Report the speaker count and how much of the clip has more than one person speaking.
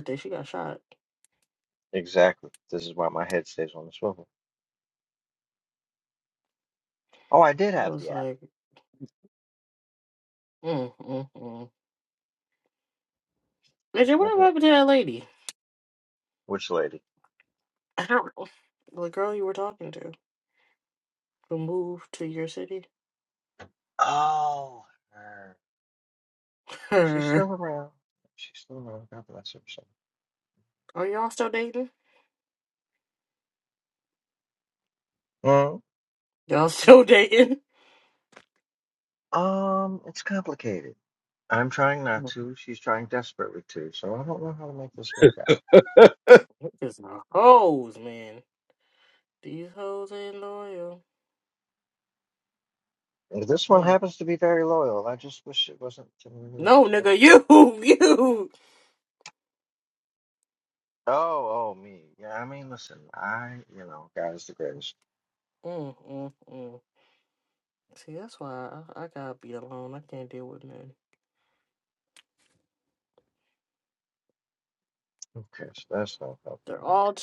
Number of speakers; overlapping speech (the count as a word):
two, about 3%